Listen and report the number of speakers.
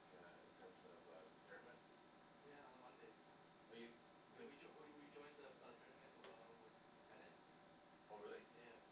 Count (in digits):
2